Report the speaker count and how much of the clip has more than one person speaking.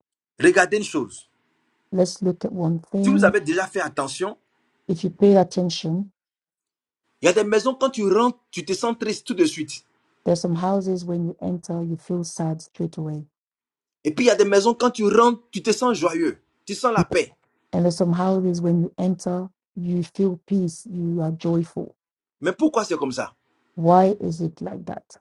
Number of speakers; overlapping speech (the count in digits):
2, about 1%